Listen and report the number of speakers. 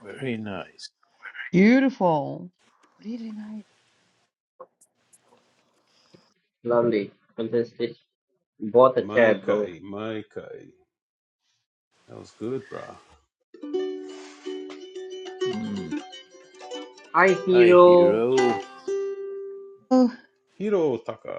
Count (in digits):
4